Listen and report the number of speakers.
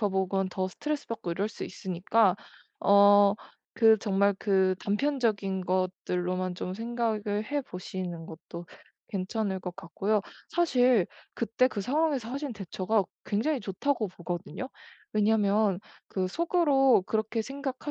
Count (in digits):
1